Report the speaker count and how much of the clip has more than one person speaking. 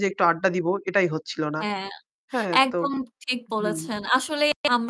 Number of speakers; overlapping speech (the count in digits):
2, about 11%